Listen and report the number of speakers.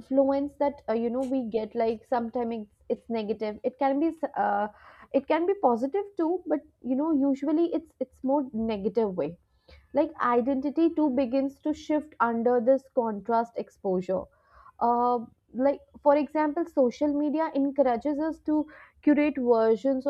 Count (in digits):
1